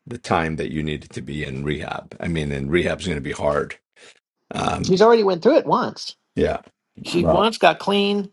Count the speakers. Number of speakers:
2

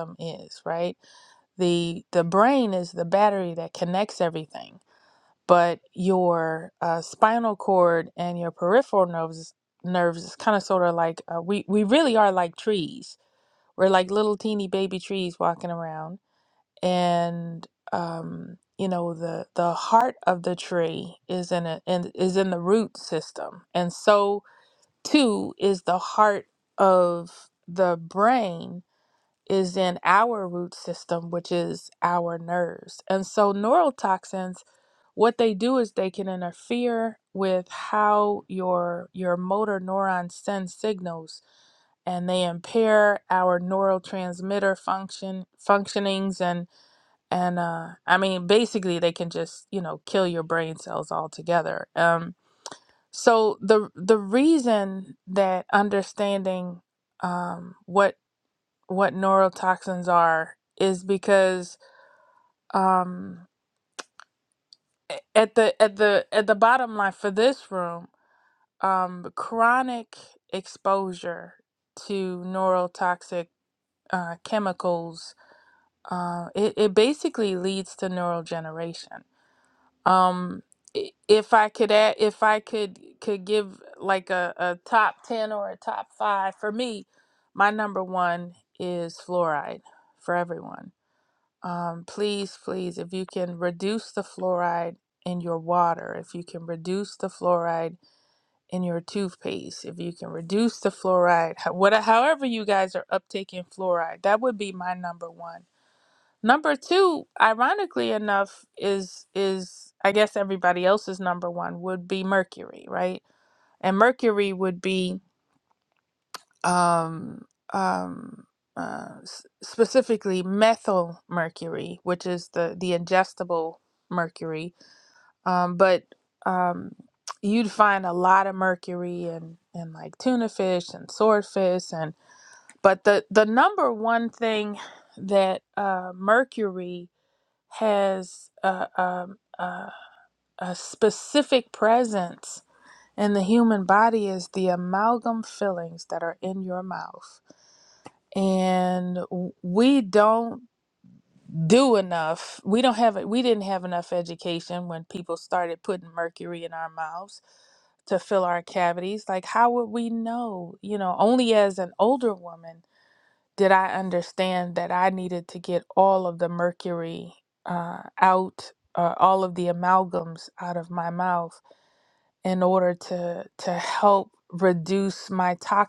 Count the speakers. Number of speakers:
1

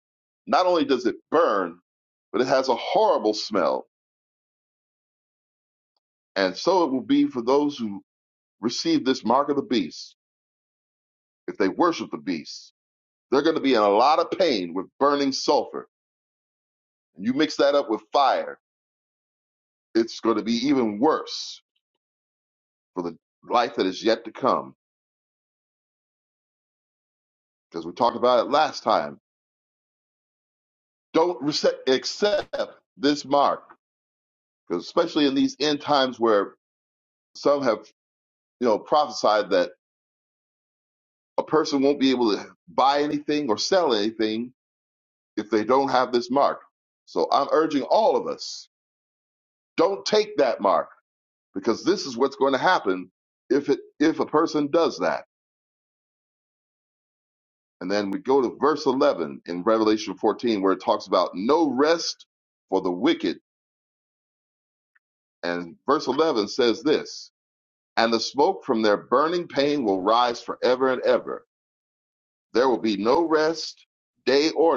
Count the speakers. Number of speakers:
1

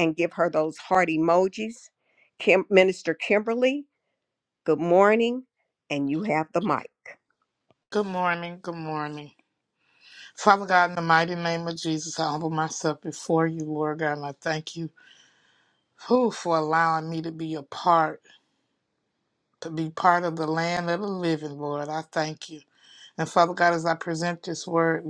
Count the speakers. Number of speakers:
2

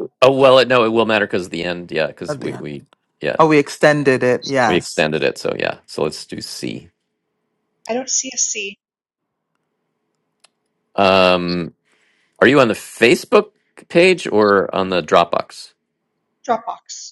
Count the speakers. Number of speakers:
3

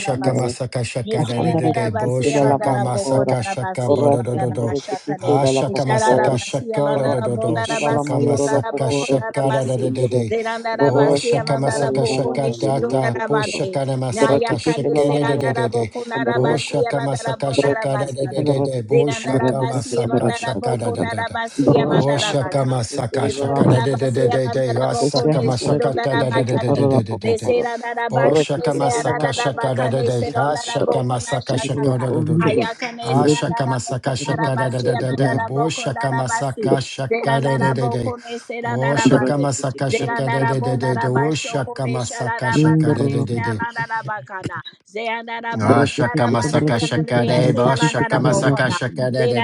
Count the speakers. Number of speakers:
3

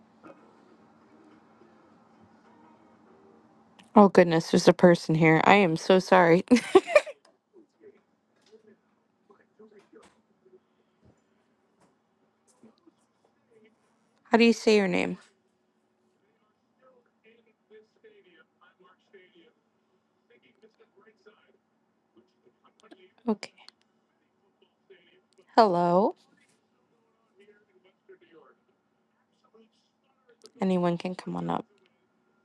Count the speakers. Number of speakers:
1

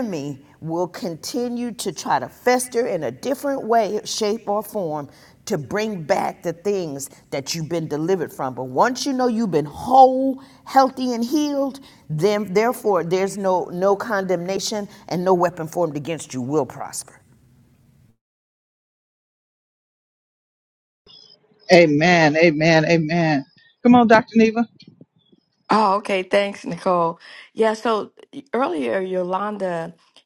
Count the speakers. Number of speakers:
3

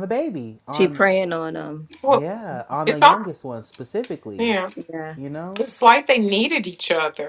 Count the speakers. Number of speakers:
3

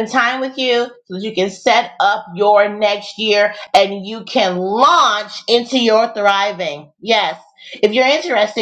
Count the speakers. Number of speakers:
1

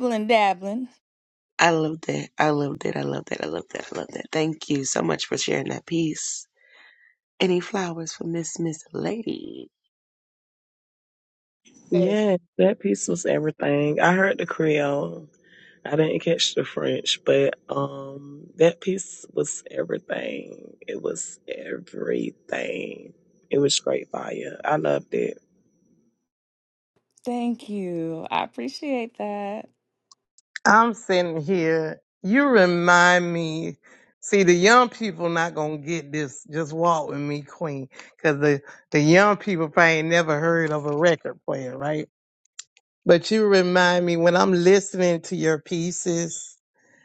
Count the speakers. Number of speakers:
4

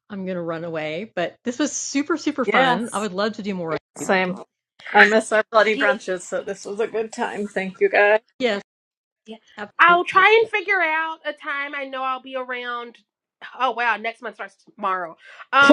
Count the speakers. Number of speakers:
3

